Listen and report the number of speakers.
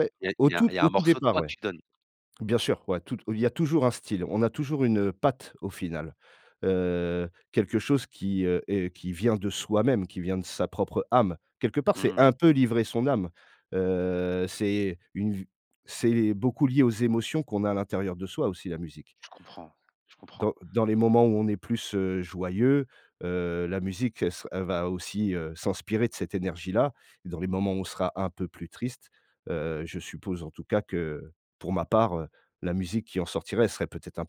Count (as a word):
two